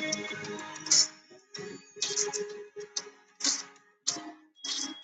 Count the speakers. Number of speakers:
0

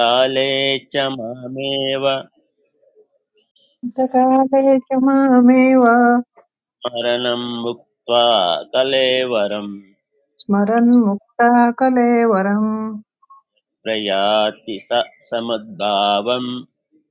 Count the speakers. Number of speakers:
2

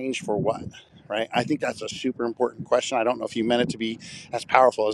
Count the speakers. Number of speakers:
1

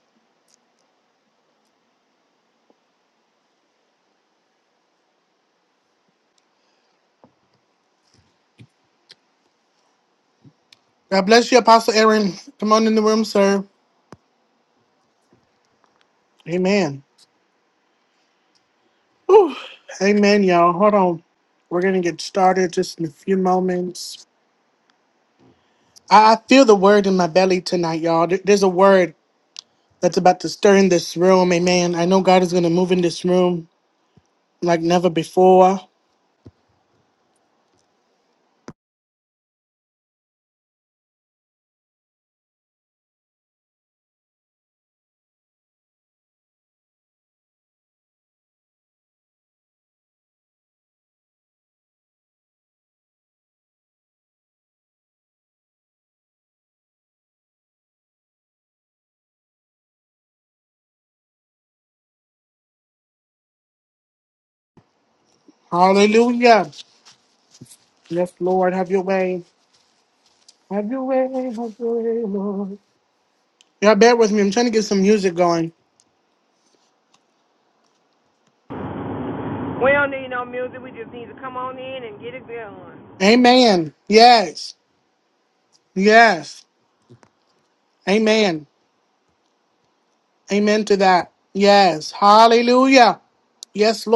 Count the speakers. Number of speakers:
2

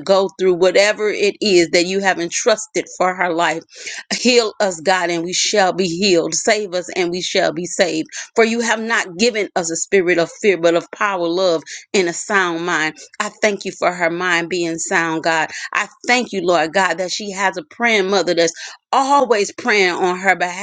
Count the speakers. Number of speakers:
1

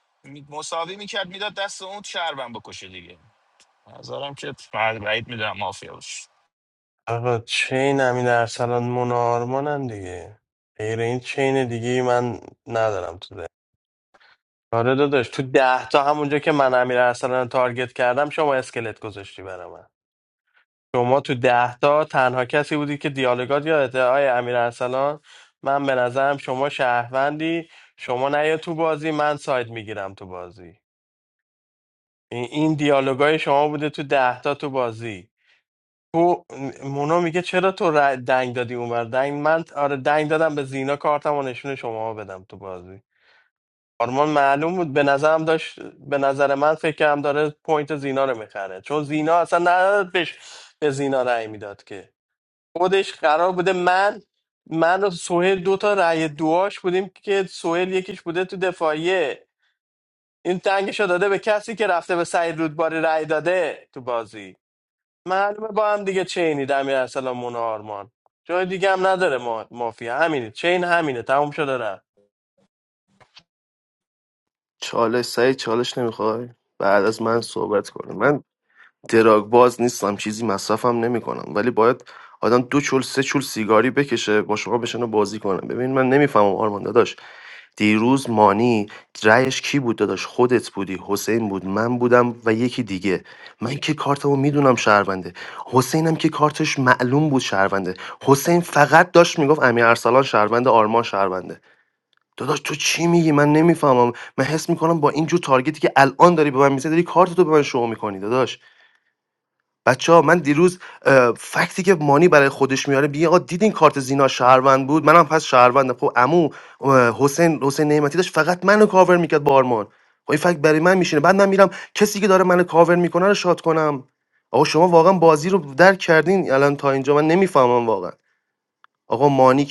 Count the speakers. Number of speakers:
3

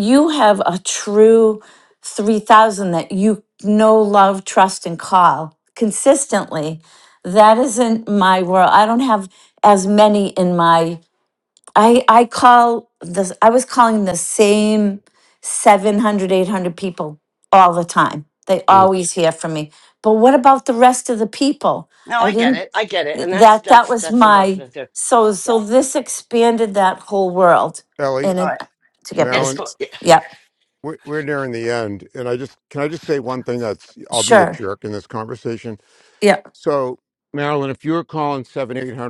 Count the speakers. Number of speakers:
3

